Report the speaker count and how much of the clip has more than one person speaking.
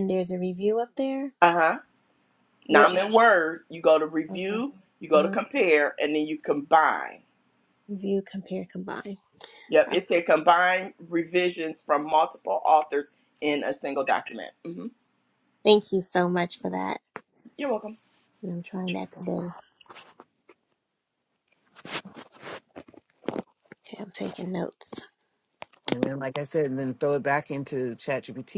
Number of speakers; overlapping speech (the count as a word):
three, about 3%